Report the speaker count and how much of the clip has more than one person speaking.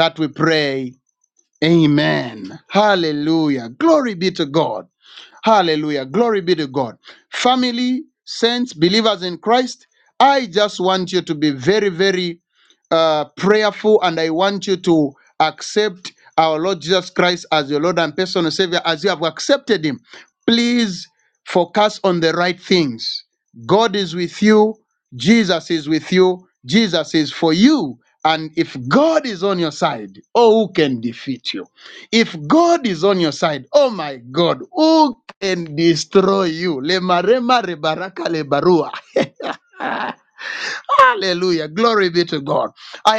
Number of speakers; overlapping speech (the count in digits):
1, no overlap